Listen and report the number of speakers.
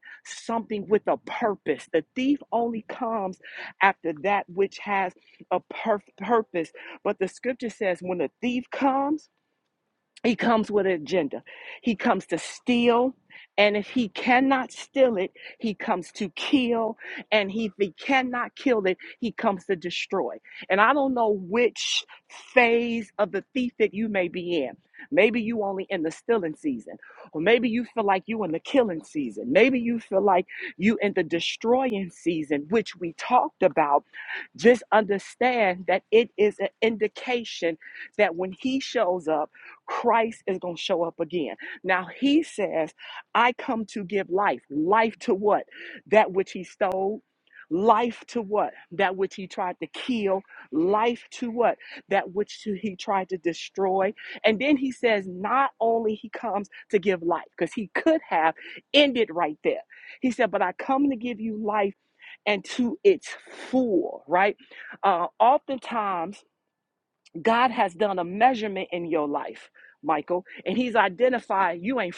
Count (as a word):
one